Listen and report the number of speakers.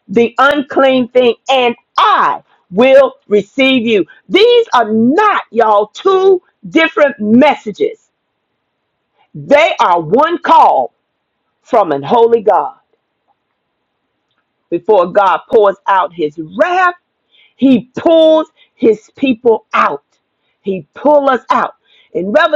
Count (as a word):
one